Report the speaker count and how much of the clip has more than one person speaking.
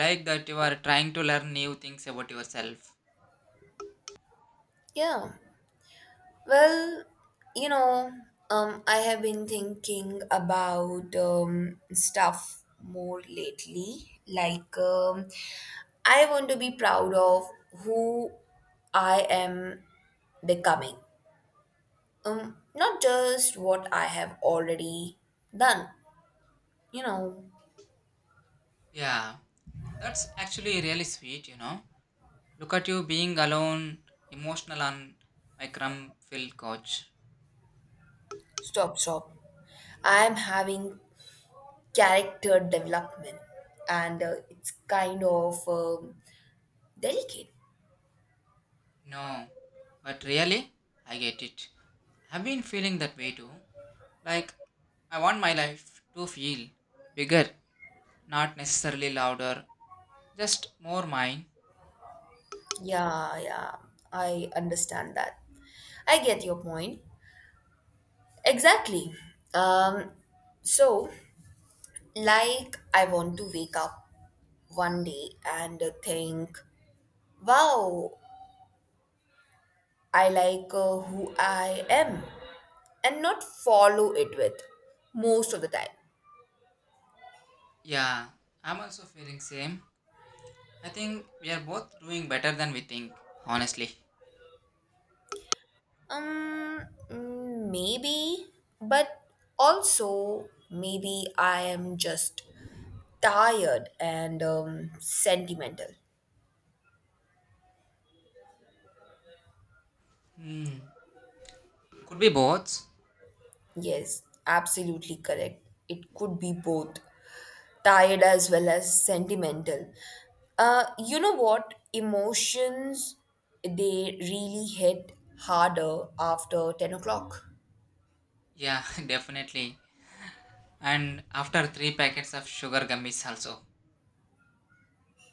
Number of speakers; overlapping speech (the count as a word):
two, no overlap